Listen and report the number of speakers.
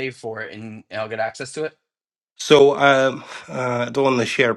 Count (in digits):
2